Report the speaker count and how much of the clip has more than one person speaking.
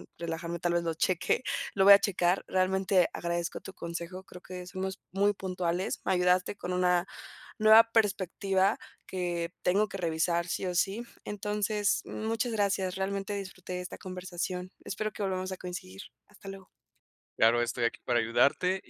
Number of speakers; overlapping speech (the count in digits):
2, no overlap